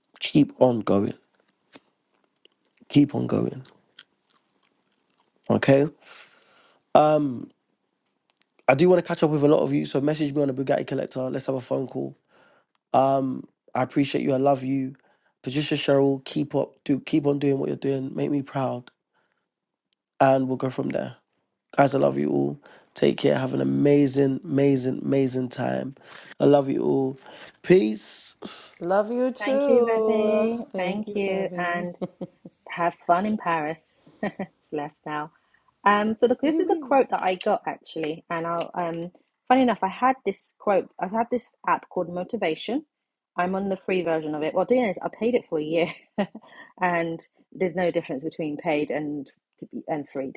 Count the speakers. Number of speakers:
3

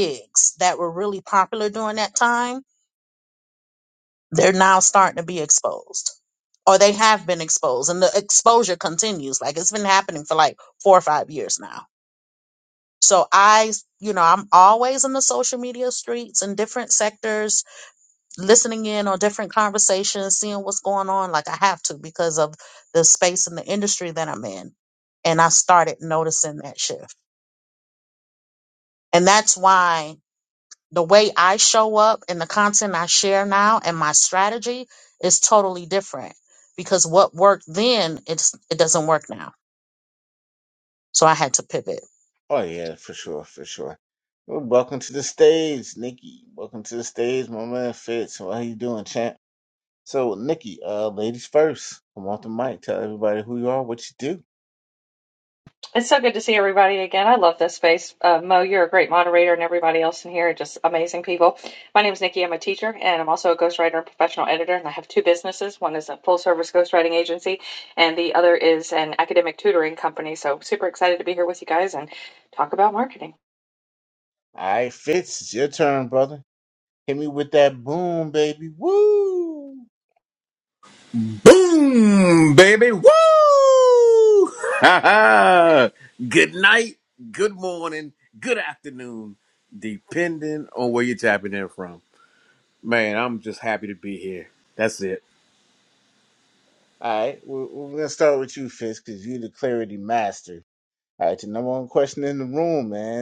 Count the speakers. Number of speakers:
4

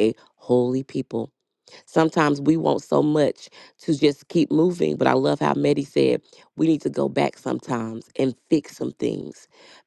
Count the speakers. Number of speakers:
1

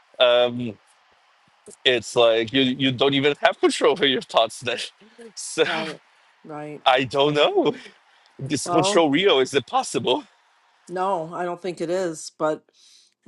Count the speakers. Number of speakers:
2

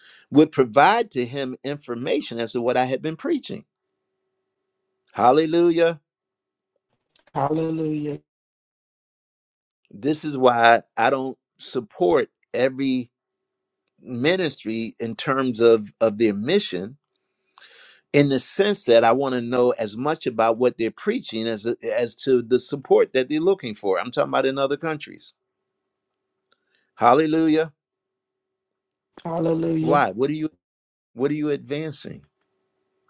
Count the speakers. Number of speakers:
2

